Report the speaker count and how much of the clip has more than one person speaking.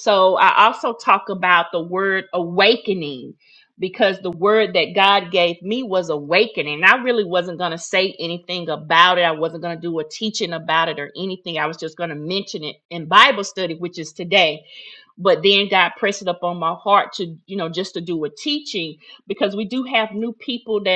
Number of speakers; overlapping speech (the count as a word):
one, no overlap